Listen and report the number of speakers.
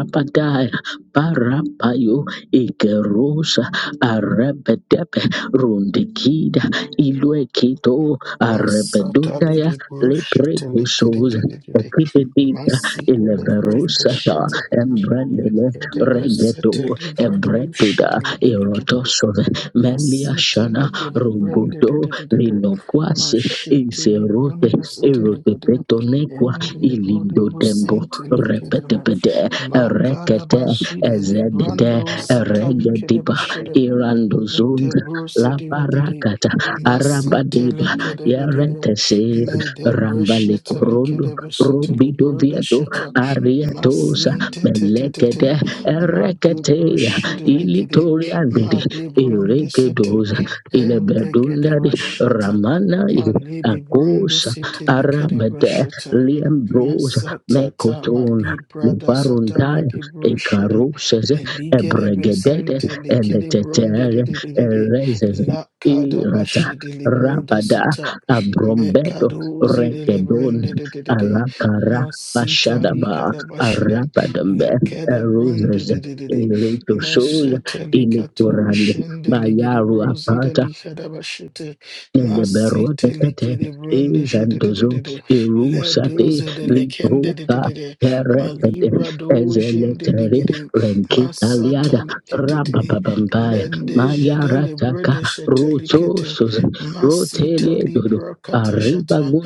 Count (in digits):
2